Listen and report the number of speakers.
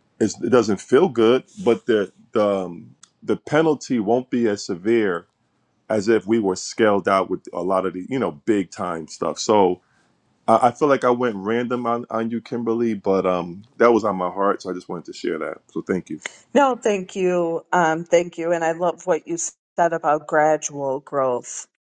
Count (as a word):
two